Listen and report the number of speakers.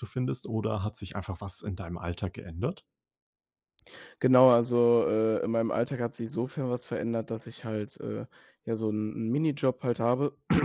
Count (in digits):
2